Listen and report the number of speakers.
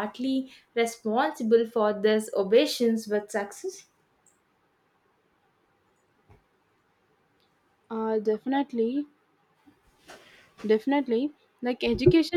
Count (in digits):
2